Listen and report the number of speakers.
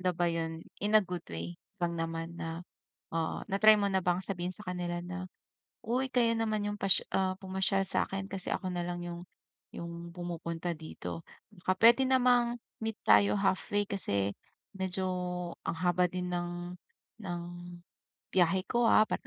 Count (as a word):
one